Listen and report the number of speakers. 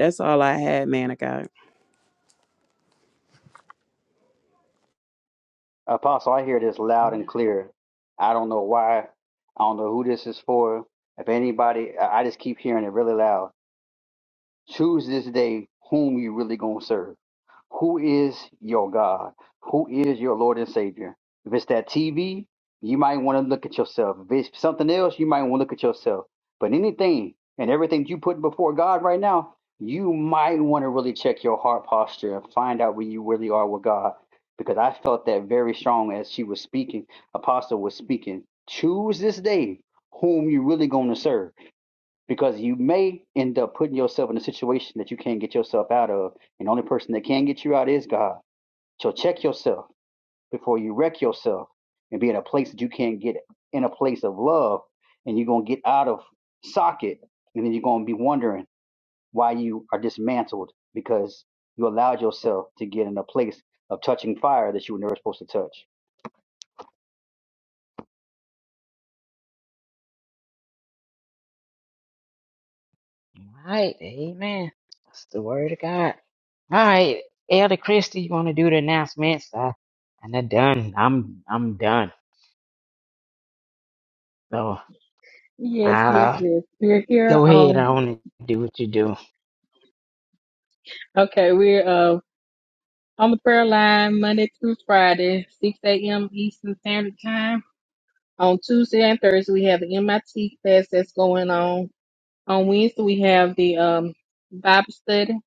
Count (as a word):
four